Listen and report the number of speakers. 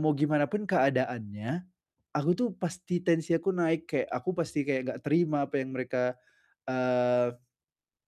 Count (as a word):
one